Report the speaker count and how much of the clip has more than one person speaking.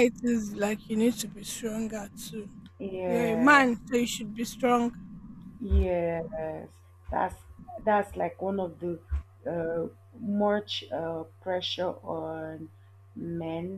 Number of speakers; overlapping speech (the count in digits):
2, about 4%